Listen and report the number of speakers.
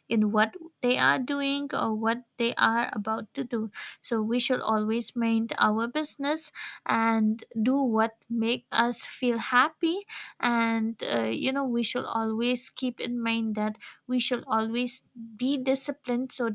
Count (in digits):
1